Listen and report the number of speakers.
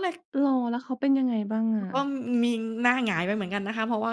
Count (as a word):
two